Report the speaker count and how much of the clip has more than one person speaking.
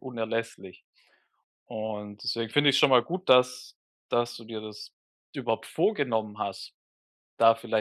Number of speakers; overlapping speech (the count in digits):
1, no overlap